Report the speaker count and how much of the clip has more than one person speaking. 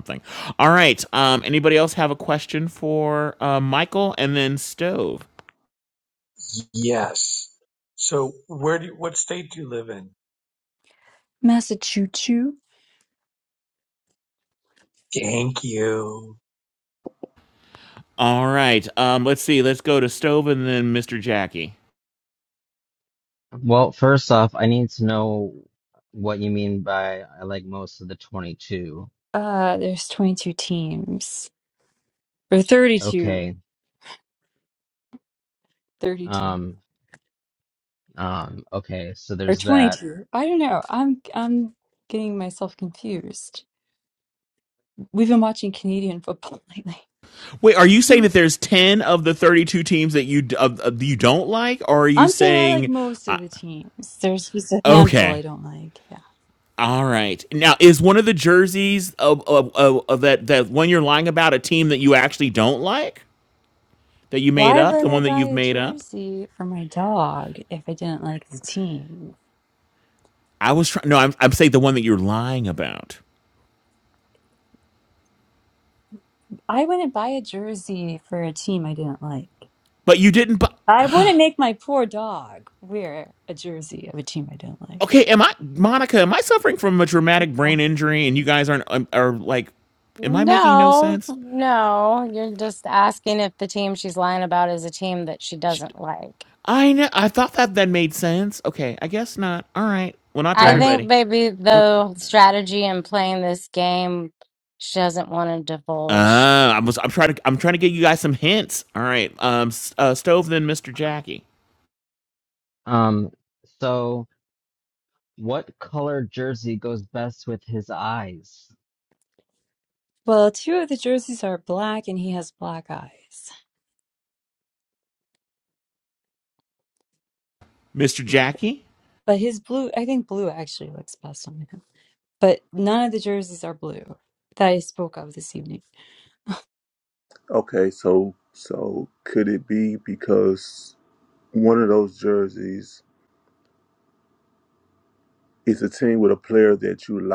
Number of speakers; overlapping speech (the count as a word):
six, about 4%